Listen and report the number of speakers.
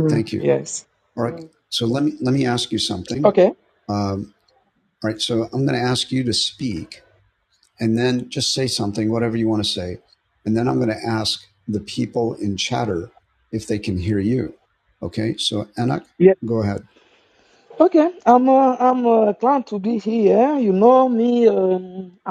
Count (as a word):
two